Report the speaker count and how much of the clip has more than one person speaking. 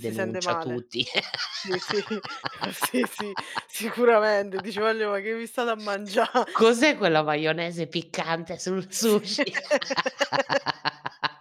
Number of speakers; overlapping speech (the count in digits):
2, about 9%